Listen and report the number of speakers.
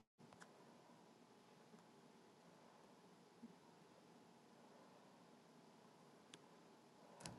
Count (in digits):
0